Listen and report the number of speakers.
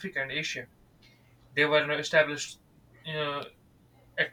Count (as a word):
one